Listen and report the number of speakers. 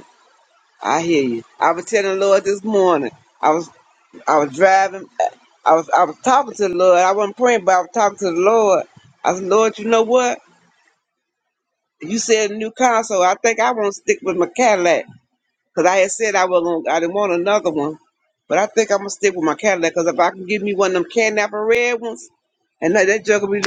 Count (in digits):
1